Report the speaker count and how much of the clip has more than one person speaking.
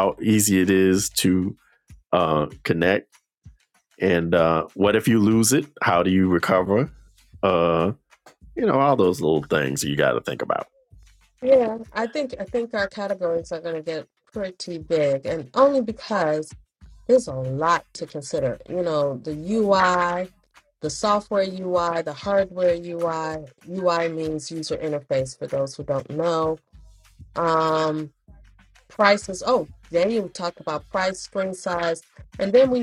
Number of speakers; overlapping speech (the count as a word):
two, no overlap